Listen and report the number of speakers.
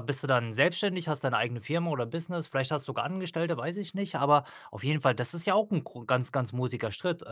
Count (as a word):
one